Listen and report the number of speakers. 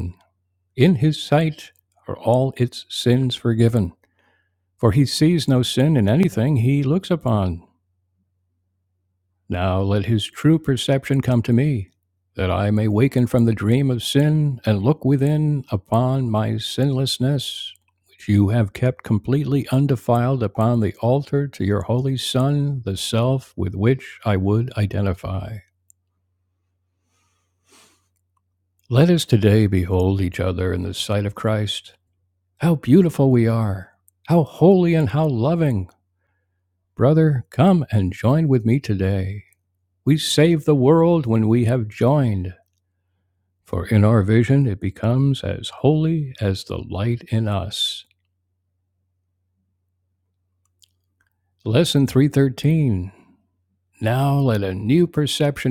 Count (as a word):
one